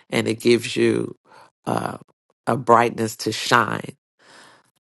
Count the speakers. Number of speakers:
one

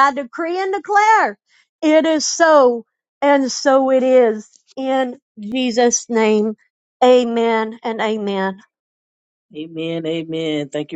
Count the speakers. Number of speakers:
two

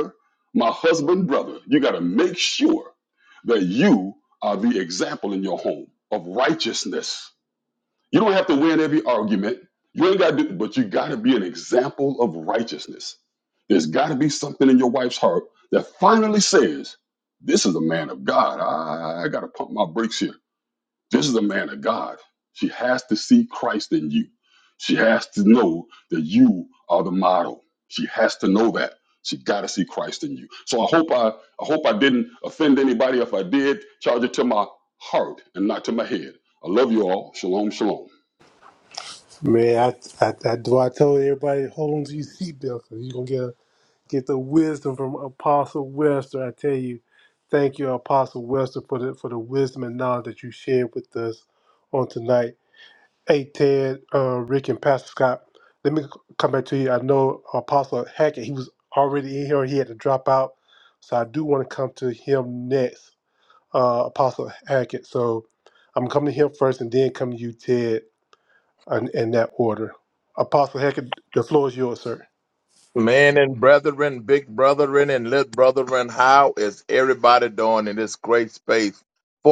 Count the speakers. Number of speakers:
three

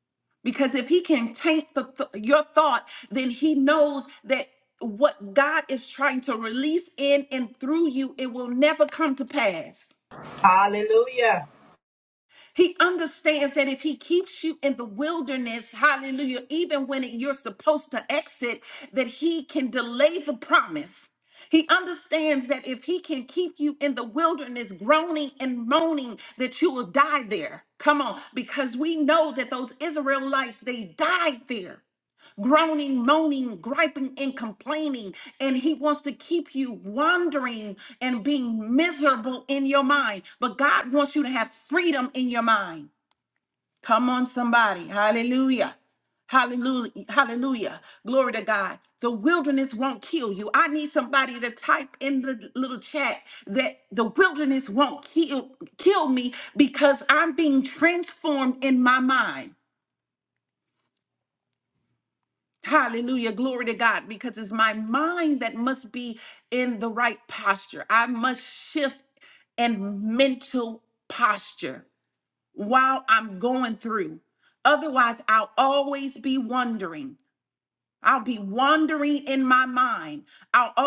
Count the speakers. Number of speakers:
two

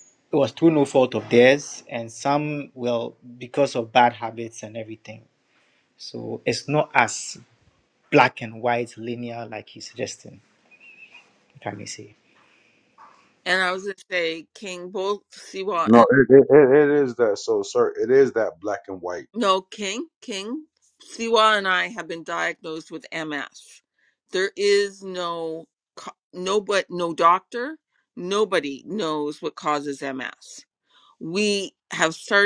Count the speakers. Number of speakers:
three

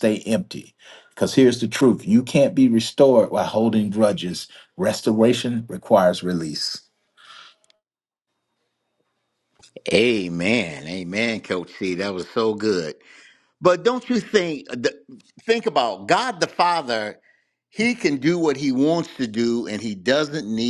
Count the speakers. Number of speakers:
two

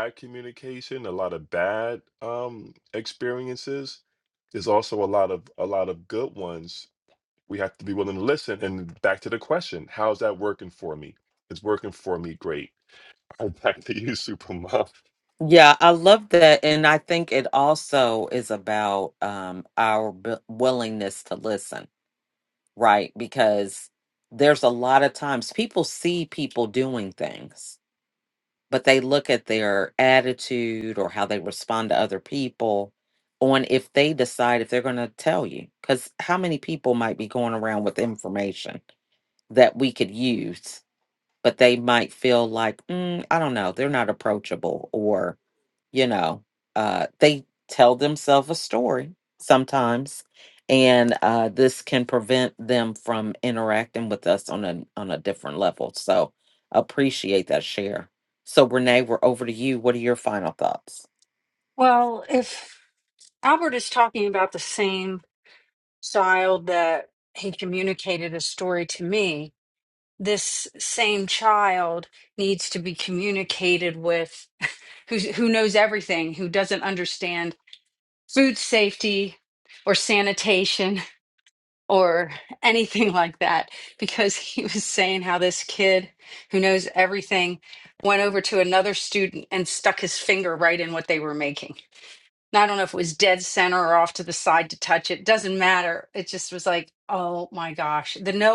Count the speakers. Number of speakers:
three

